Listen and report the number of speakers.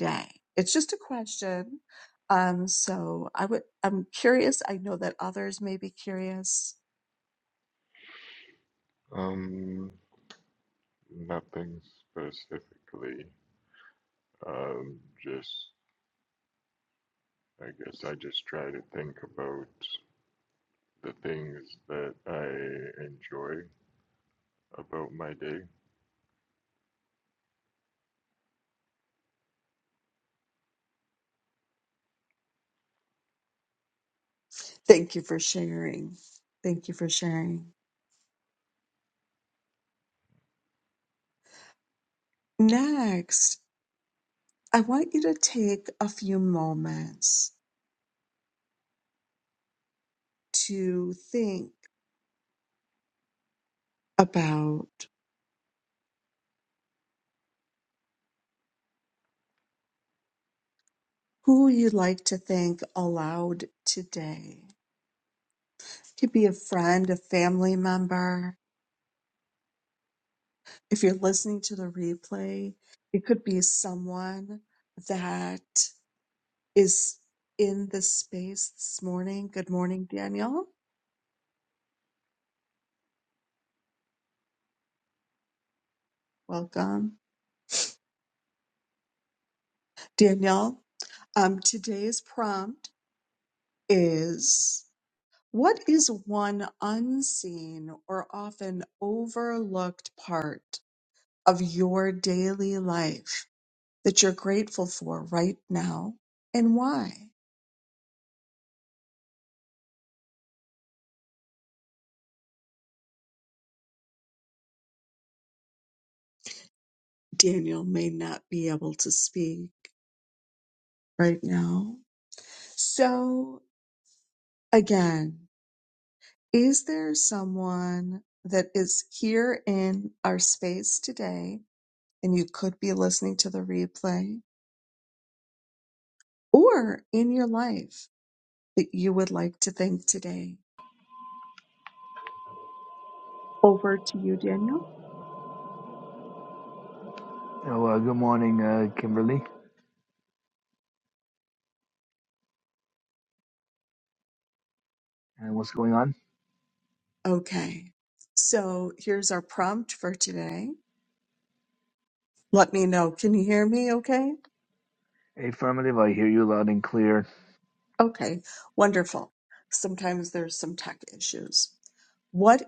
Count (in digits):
3